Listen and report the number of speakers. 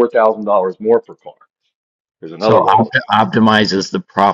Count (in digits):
2